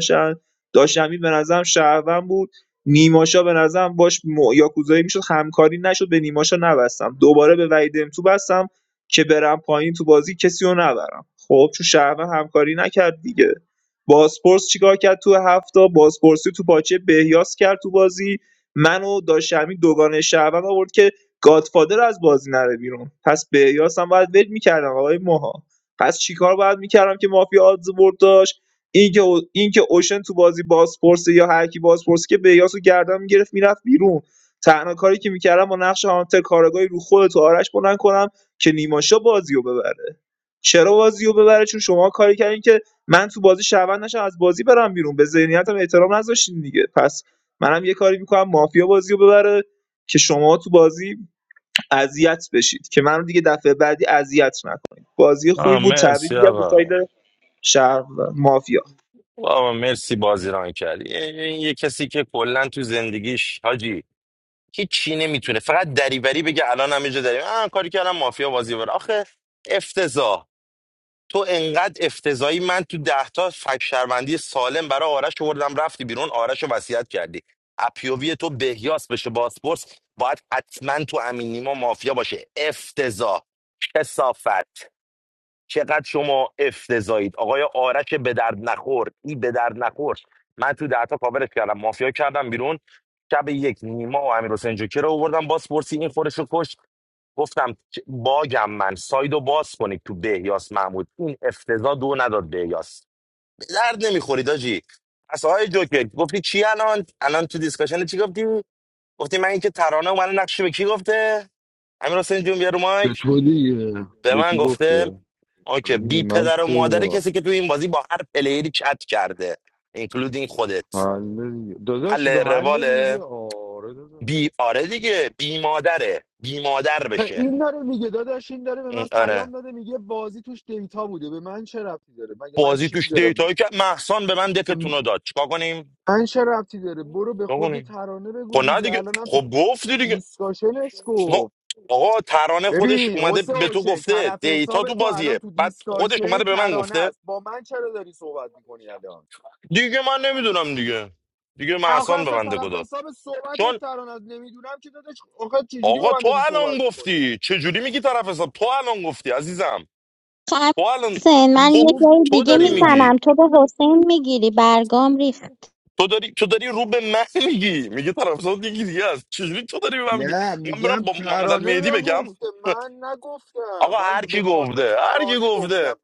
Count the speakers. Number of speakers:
four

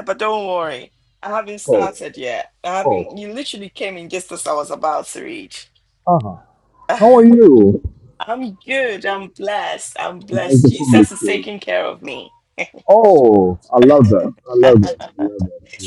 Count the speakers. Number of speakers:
two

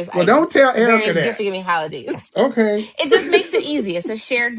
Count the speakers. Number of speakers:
two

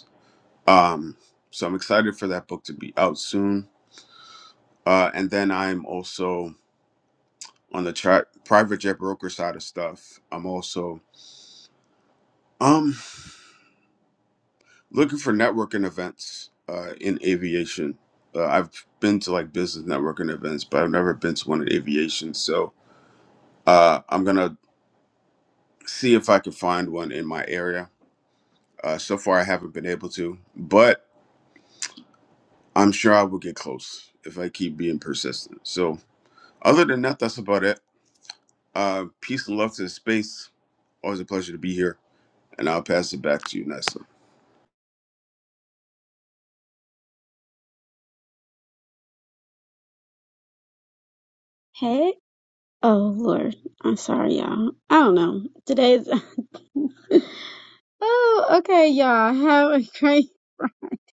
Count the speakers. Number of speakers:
two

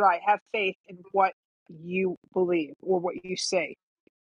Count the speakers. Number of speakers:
one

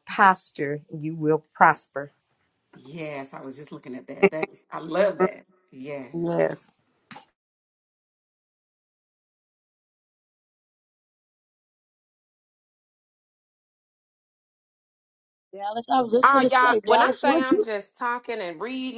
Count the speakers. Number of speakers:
four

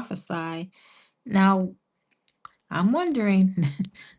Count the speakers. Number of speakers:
one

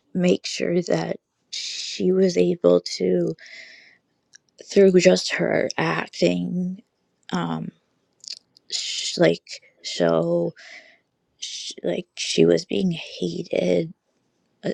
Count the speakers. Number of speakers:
one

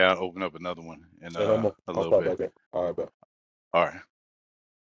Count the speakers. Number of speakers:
two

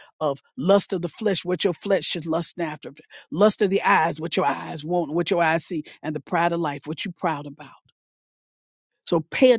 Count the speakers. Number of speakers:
one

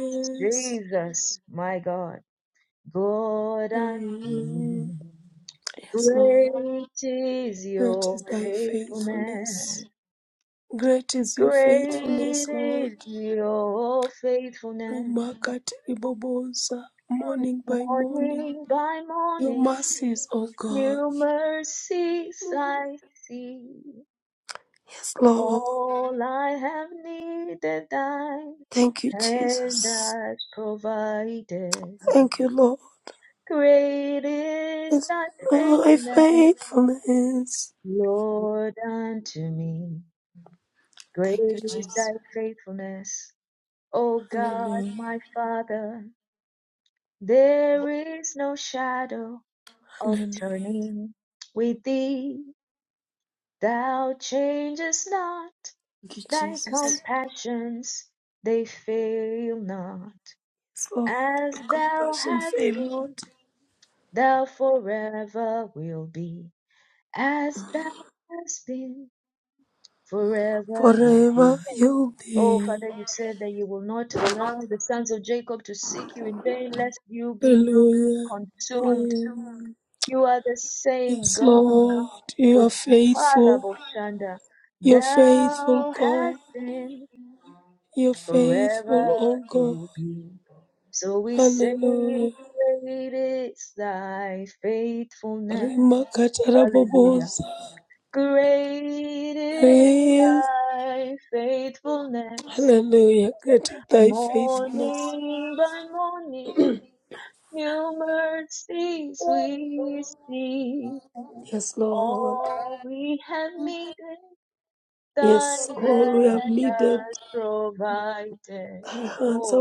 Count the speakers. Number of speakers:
two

